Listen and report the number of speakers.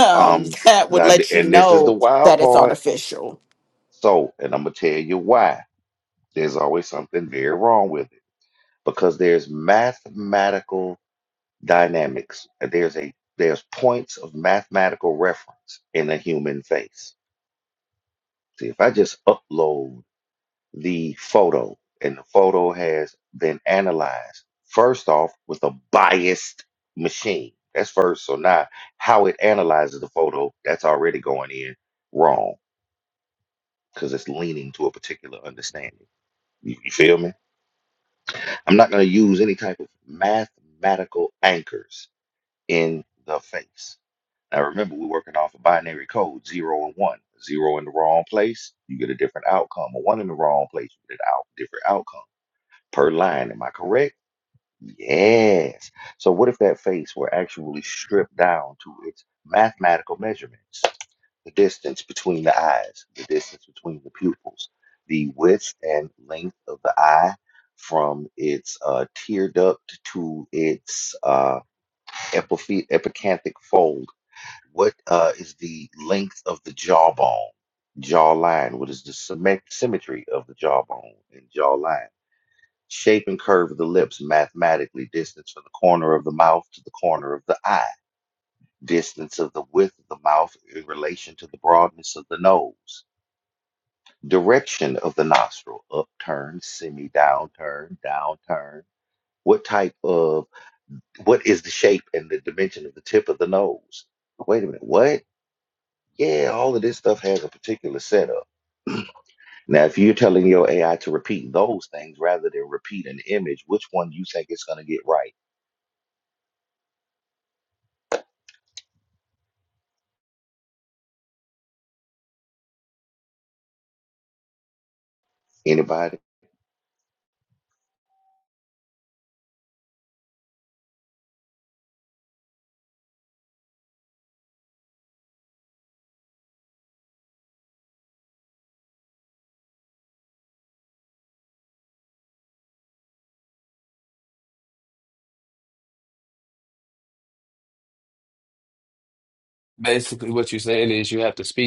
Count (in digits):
3